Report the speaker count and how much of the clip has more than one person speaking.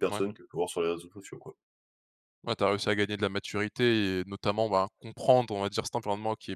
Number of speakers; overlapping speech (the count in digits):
2, about 2%